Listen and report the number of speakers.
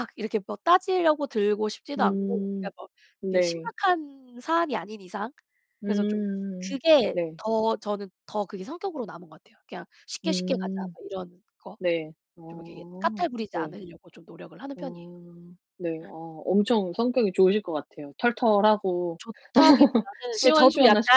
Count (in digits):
2